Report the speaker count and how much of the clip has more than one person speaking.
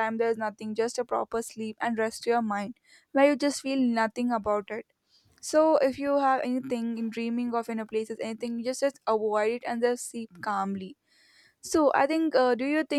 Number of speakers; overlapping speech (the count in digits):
1, no overlap